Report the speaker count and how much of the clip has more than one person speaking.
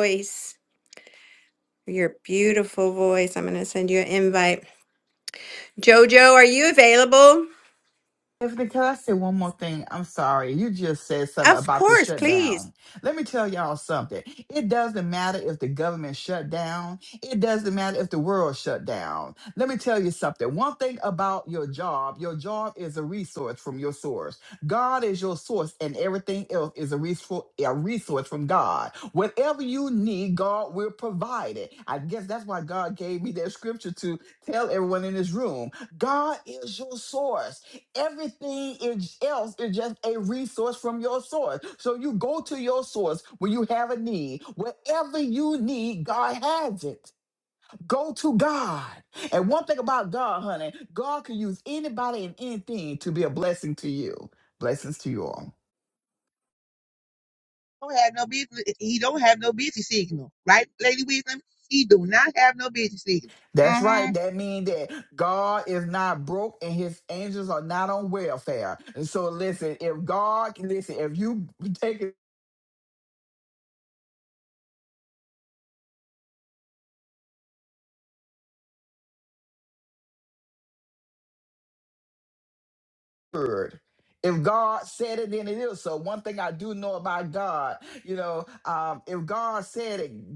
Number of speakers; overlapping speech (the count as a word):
three, about 2%